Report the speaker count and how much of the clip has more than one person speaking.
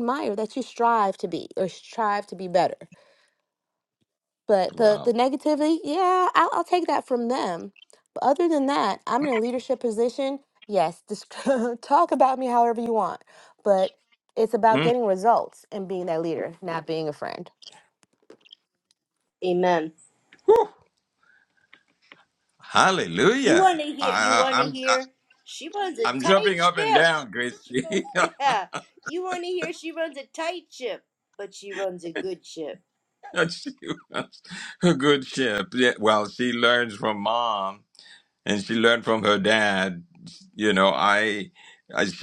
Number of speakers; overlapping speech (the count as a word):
three, about 7%